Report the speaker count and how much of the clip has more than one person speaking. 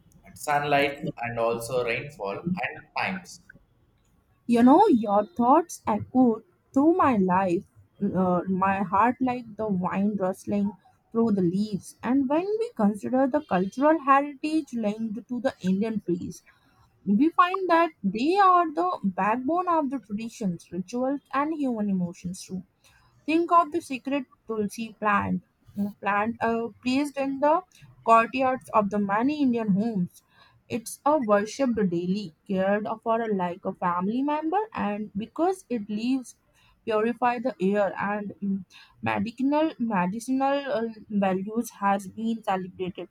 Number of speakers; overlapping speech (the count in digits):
2, no overlap